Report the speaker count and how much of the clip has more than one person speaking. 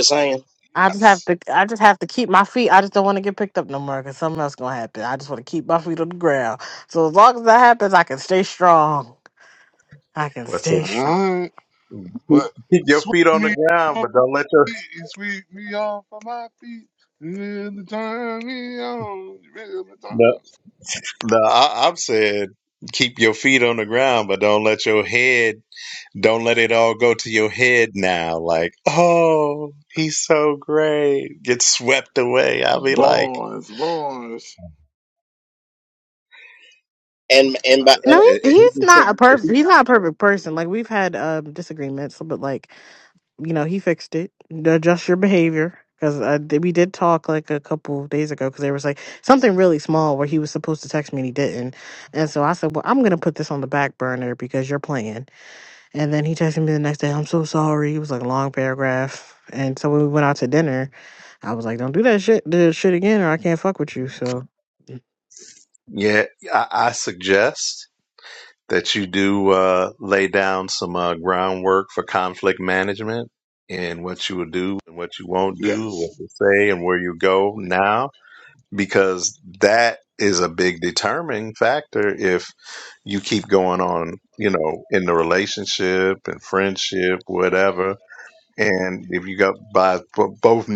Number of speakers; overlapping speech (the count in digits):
4, about 5%